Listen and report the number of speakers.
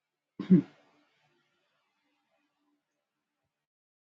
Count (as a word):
zero